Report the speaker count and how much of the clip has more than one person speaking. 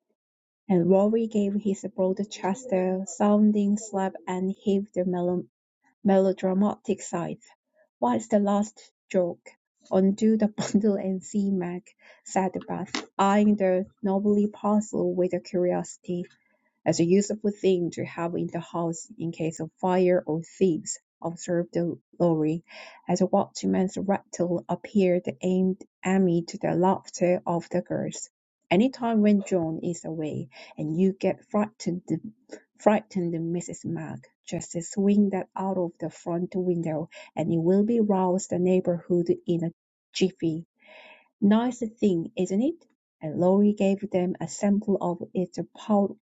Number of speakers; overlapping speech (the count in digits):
1, no overlap